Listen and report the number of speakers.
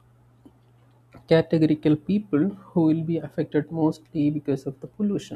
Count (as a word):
one